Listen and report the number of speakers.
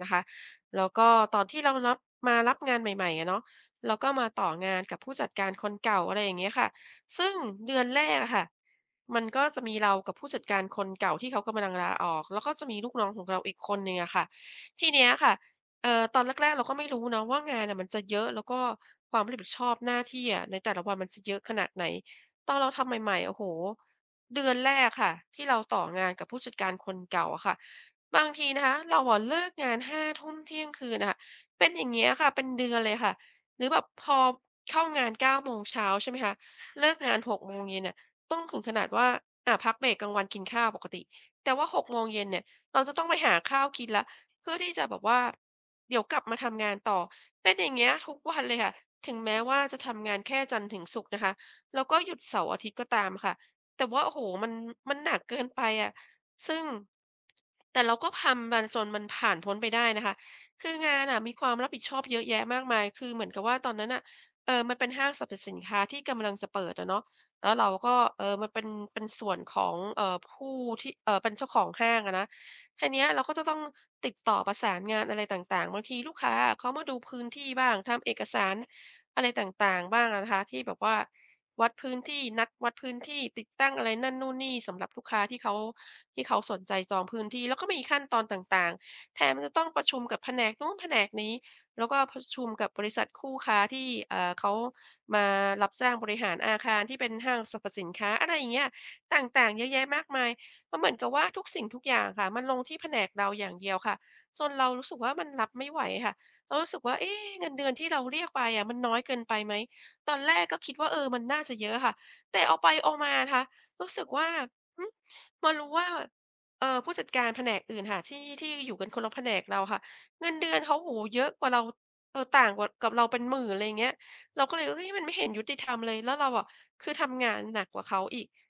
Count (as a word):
one